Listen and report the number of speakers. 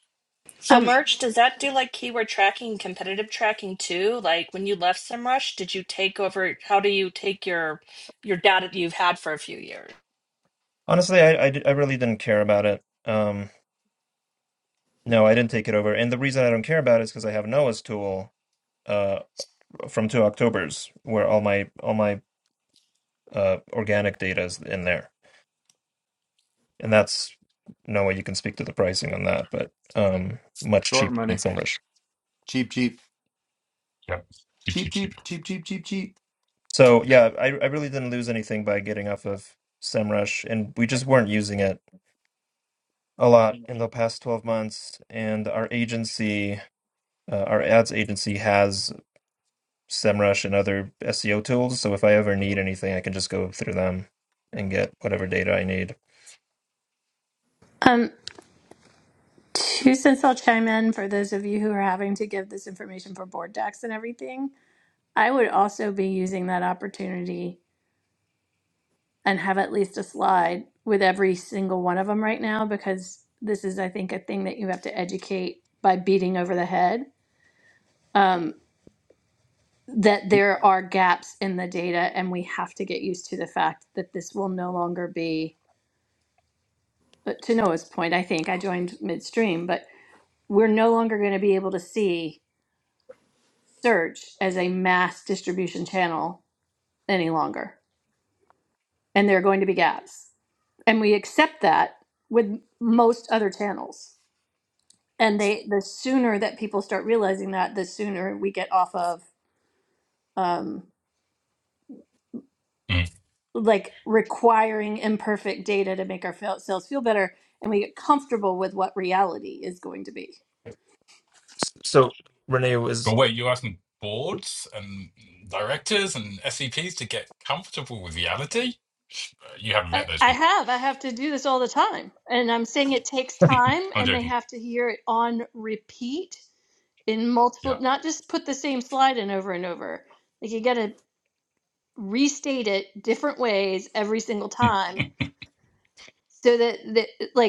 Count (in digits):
5